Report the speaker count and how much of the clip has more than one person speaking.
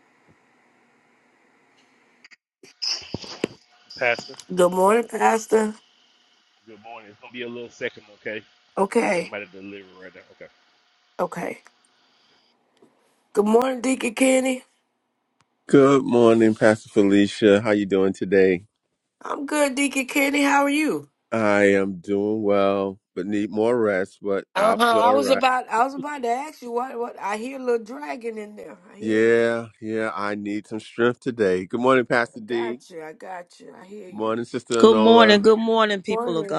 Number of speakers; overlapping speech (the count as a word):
four, about 7%